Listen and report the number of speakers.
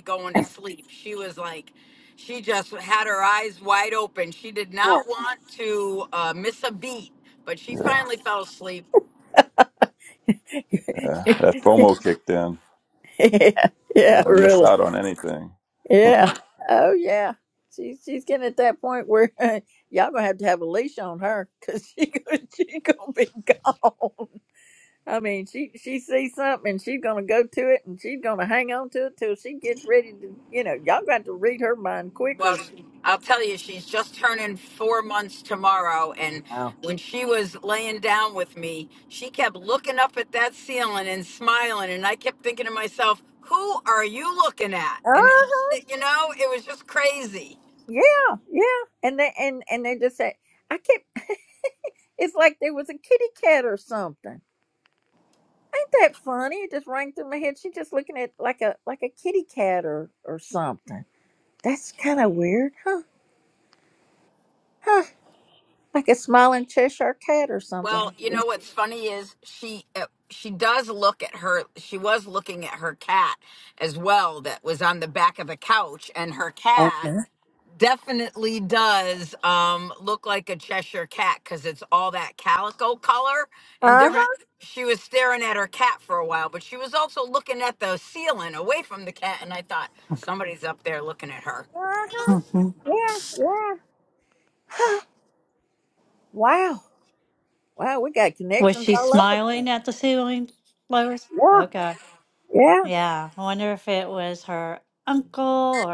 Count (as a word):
four